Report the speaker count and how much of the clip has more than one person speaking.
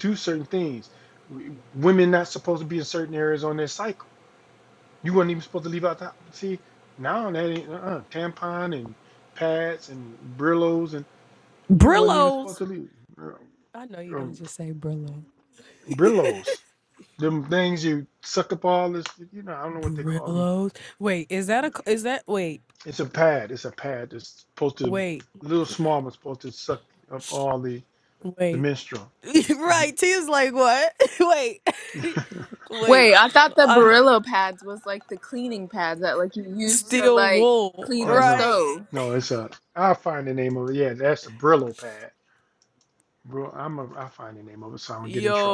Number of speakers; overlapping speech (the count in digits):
3, about 11%